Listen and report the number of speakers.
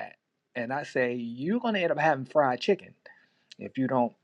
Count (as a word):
one